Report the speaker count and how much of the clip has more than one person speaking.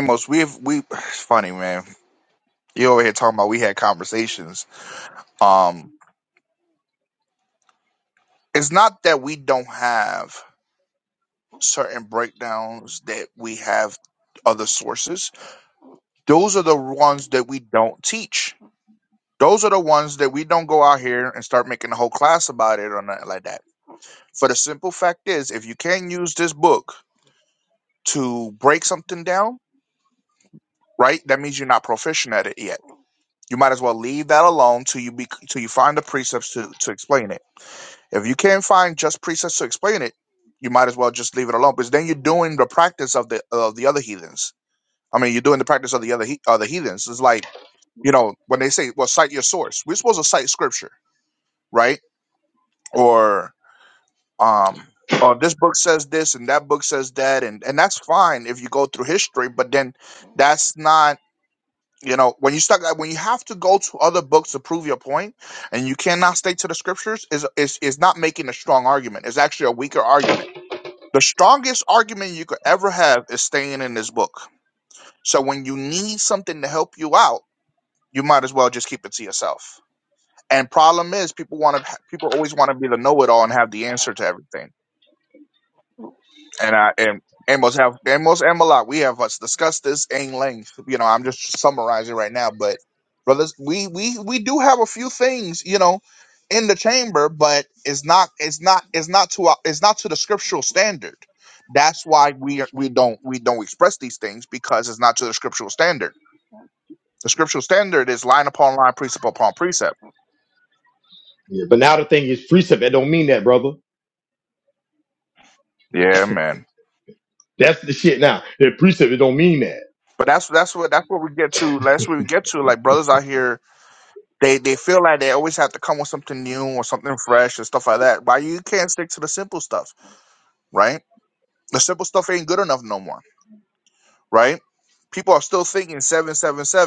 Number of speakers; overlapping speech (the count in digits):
2, no overlap